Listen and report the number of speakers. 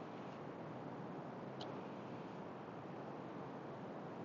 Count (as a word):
zero